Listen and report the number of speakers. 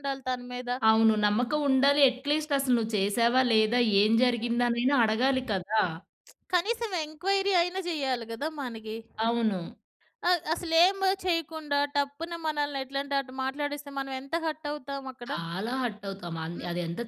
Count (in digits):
2